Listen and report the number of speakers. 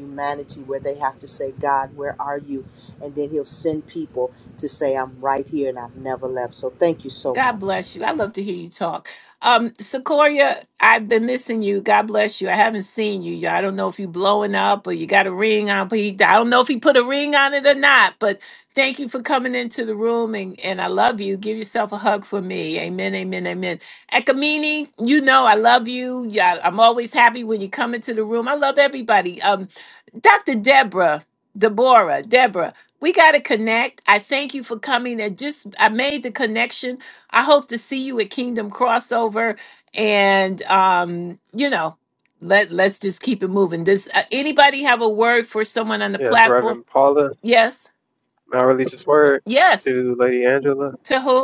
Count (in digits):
3